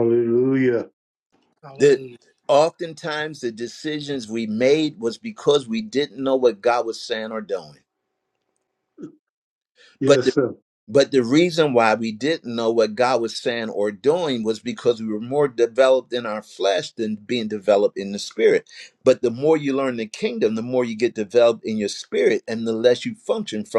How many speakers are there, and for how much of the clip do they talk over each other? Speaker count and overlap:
2, about 1%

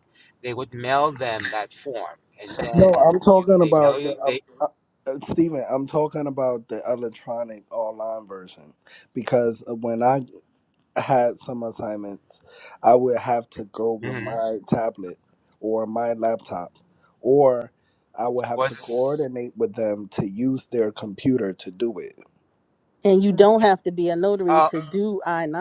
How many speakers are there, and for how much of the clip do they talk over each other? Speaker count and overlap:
3, about 8%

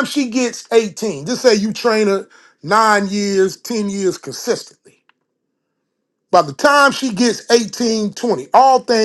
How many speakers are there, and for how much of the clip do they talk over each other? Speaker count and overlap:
1, no overlap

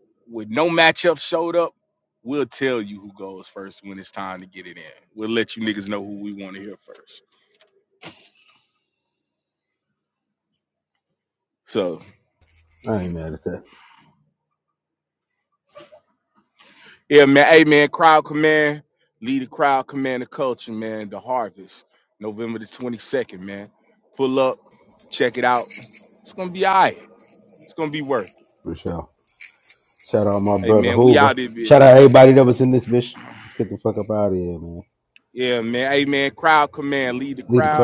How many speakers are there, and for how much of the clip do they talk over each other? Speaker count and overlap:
2, about 3%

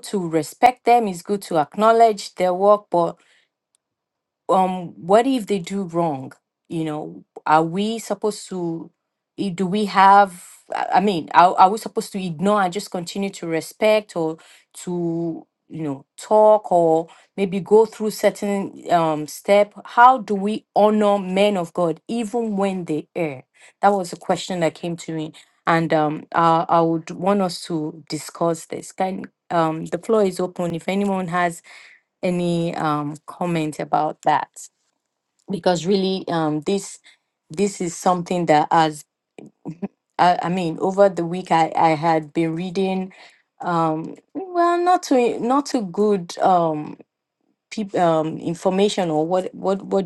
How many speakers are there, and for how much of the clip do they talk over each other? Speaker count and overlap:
1, no overlap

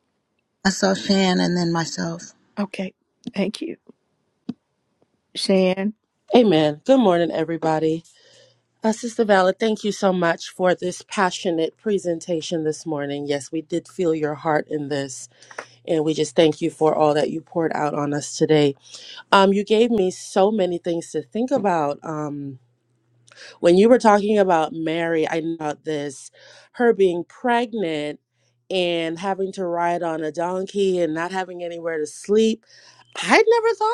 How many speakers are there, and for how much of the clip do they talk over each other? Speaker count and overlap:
3, no overlap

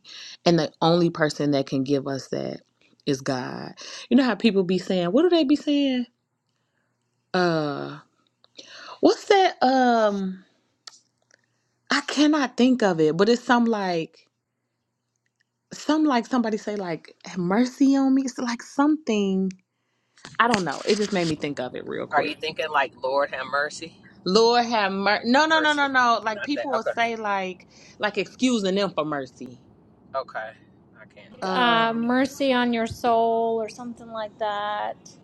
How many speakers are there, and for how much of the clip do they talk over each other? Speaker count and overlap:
3, about 5%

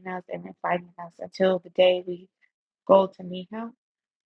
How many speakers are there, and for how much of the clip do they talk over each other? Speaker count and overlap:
1, no overlap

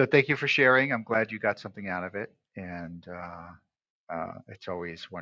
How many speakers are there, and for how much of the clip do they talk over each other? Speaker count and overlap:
1, no overlap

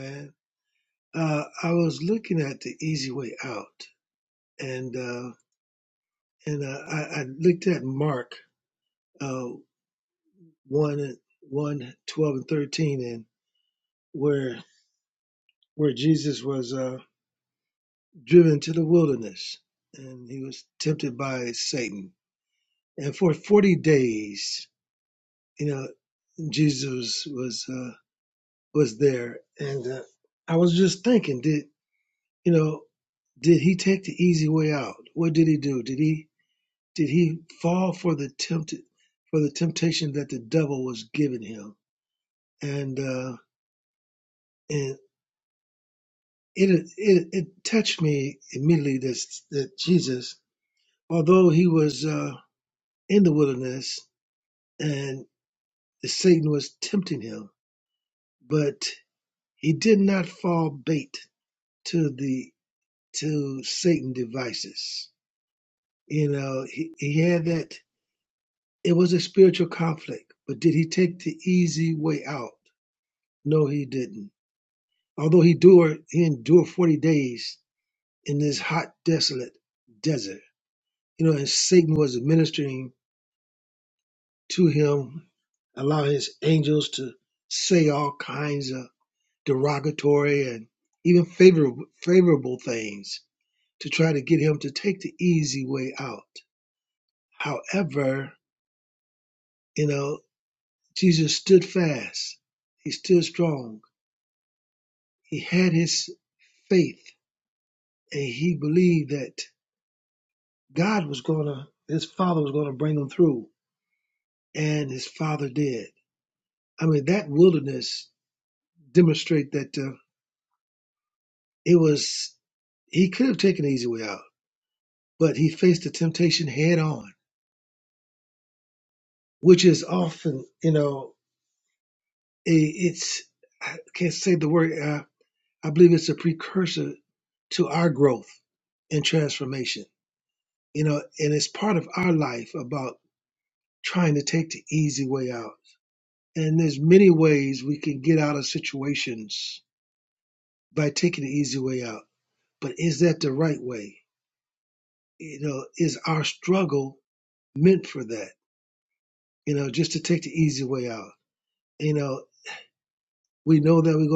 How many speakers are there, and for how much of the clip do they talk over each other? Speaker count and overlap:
1, no overlap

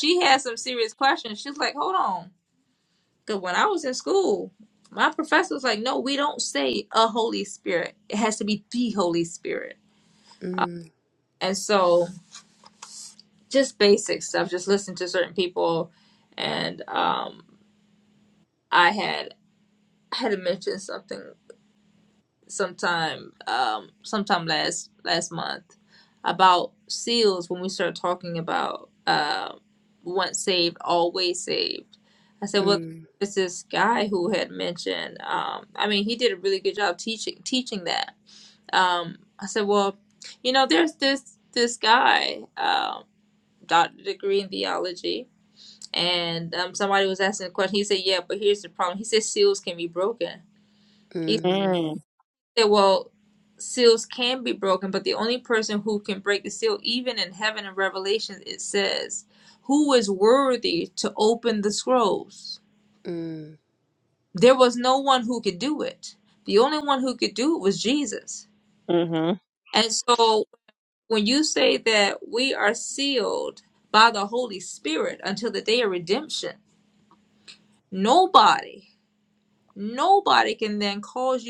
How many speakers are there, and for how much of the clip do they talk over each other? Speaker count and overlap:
3, under 1%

